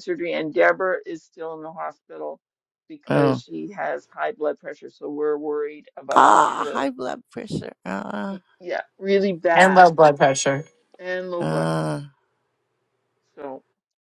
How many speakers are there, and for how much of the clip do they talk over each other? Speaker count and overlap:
three, about 13%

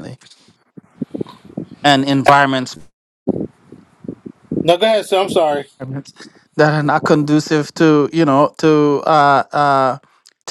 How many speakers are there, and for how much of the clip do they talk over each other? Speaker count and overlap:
two, no overlap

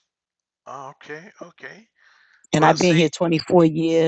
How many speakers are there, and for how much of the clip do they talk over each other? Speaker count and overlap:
two, about 13%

